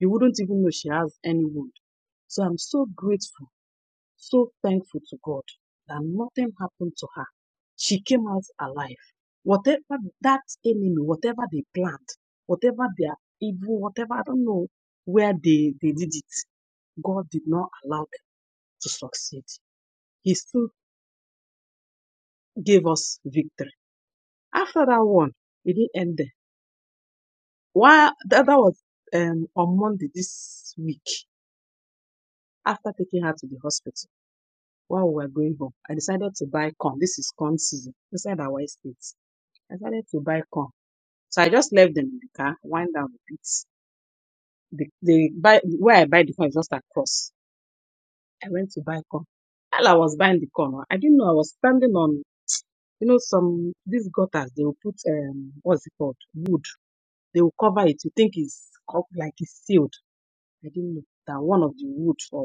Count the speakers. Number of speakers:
1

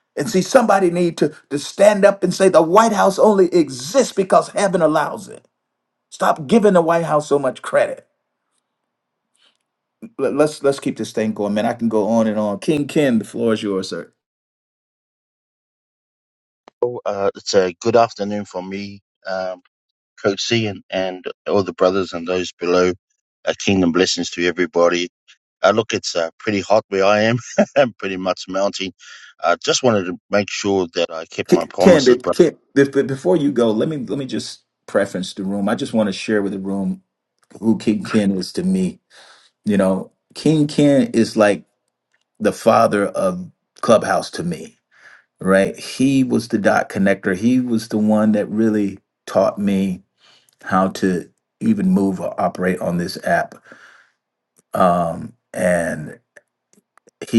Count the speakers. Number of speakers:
2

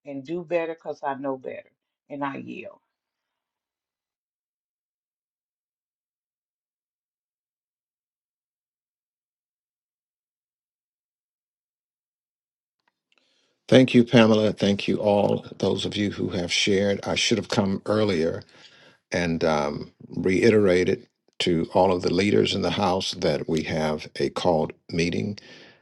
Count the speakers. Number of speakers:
2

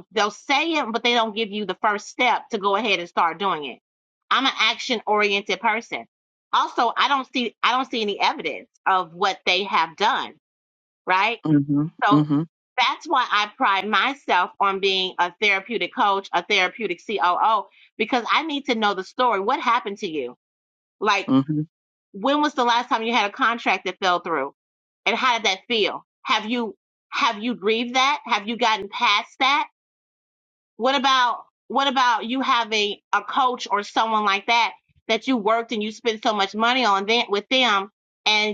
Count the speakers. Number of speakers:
2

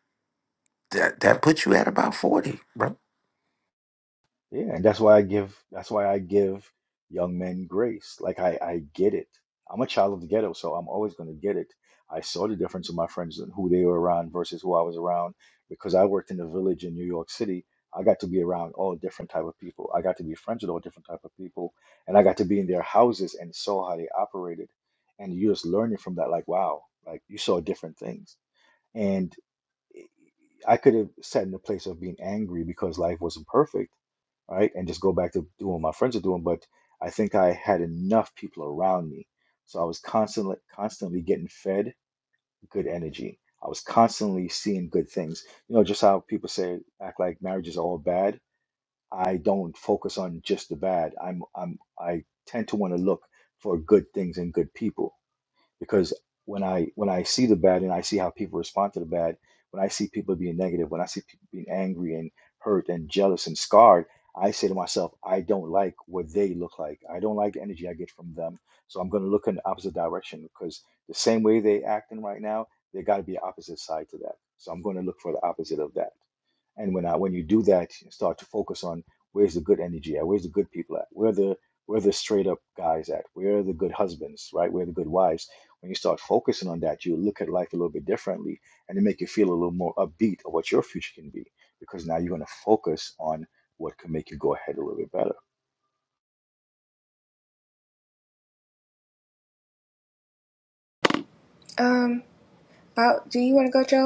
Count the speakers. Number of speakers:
3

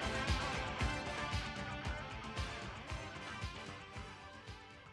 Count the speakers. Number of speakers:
0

